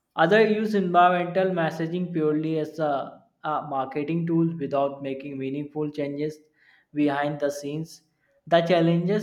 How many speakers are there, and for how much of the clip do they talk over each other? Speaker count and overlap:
one, no overlap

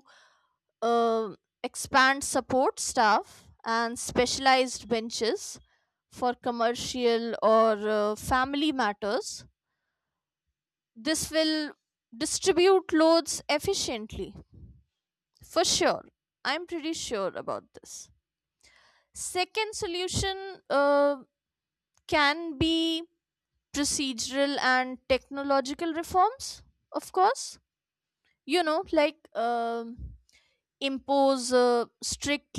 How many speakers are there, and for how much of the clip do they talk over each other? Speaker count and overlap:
one, no overlap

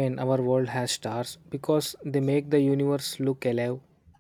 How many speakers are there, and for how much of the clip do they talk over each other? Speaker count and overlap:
one, no overlap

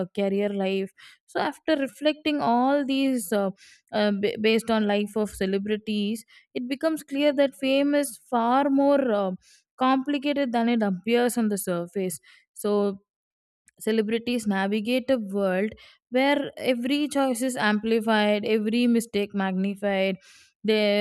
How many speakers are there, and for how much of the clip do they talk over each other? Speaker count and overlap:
one, no overlap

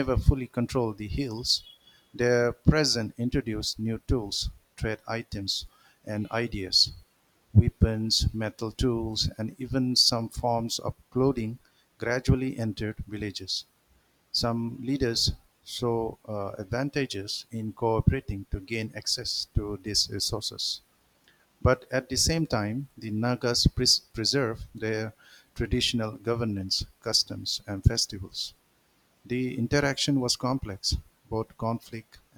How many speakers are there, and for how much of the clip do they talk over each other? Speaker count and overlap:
one, no overlap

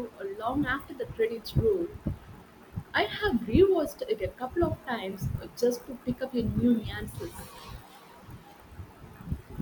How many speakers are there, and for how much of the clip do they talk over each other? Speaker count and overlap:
one, no overlap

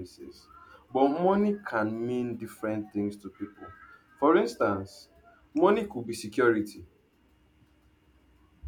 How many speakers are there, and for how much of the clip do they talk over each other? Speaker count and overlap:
one, no overlap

